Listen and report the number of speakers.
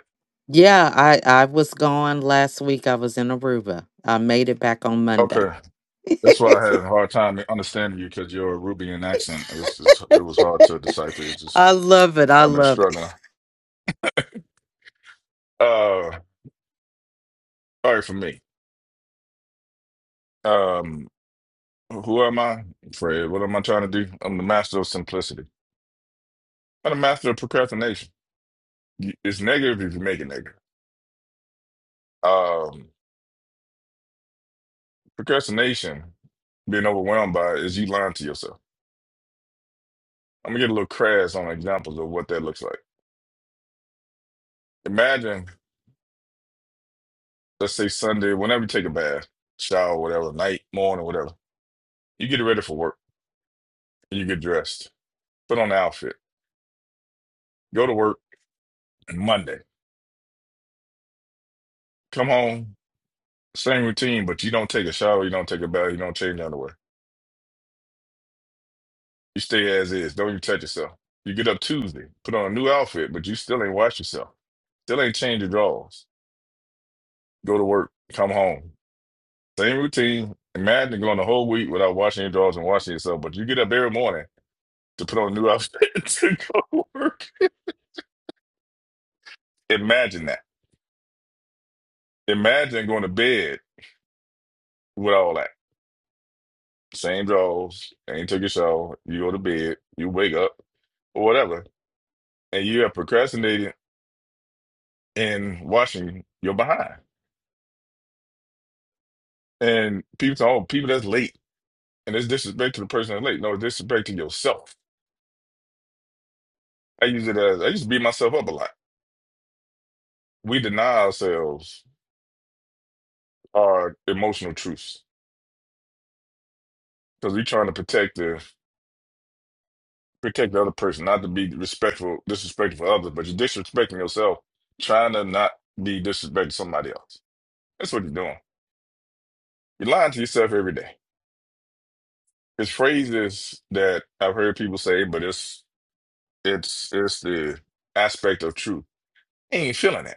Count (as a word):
two